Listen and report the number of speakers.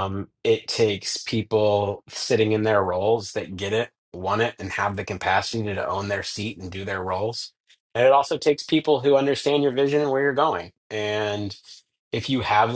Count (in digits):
1